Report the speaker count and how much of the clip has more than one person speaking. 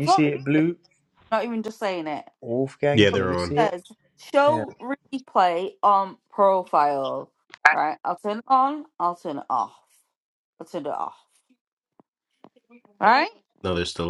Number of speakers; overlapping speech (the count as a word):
three, about 11%